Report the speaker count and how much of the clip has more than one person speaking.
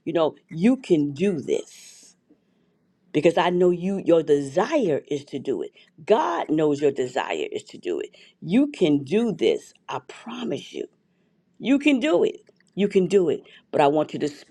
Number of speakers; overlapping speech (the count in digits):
1, no overlap